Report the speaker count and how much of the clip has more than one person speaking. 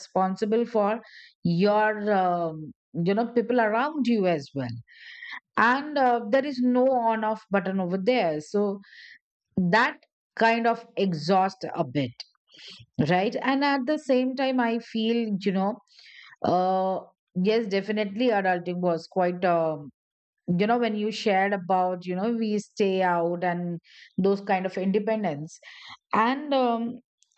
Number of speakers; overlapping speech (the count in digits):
1, no overlap